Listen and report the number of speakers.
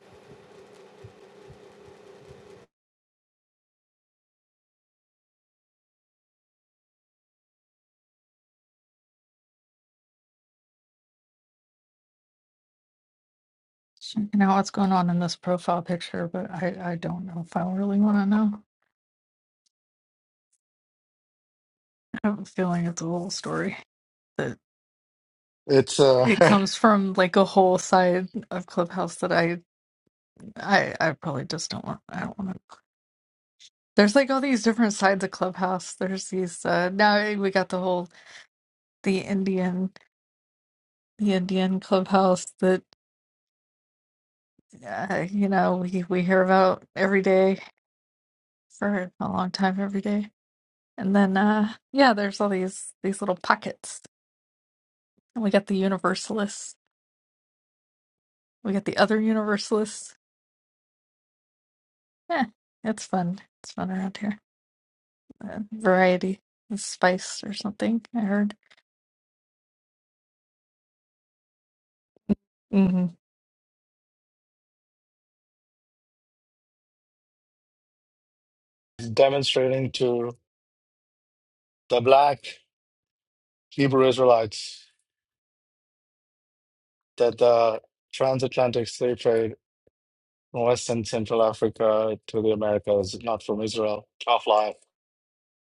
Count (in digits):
2